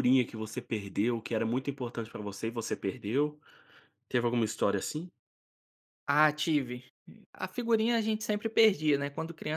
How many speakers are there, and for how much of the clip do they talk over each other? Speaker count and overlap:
two, no overlap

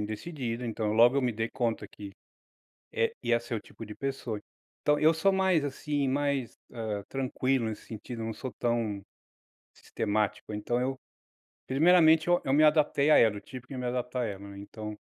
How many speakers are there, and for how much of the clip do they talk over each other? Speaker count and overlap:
one, no overlap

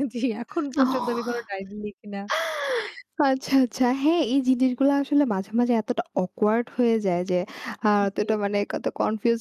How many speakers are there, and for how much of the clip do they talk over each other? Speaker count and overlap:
two, about 4%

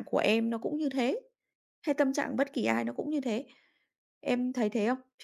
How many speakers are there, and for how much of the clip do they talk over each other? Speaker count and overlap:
one, no overlap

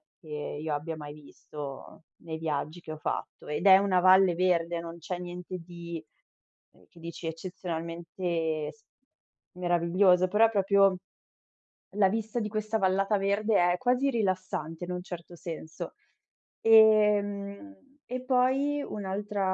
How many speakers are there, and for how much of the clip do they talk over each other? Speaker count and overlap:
one, no overlap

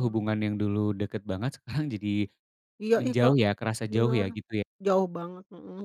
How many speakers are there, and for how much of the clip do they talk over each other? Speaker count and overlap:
two, about 15%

